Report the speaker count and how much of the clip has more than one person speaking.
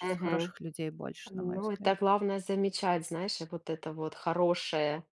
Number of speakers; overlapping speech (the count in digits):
2, about 22%